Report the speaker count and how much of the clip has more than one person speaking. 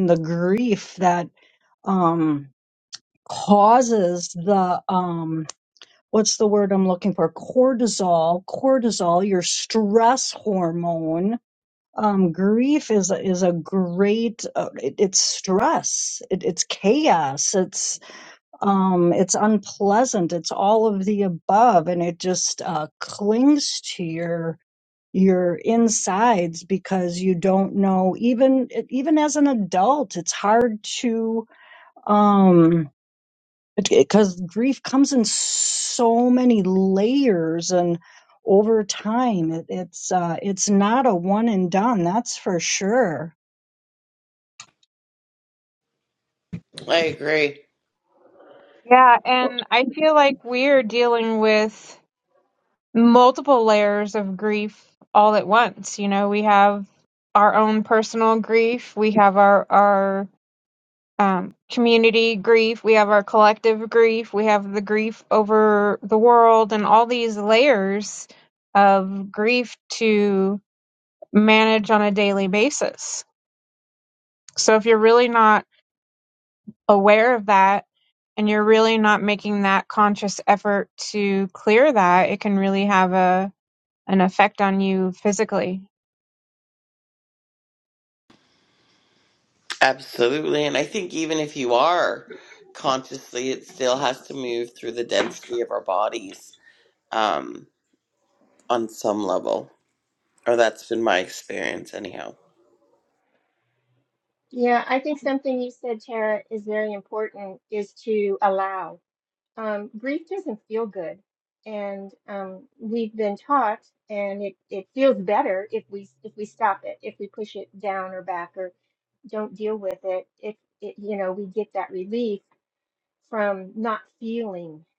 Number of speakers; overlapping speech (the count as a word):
four, no overlap